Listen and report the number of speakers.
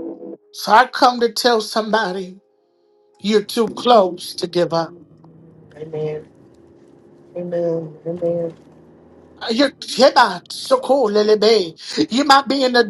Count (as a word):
two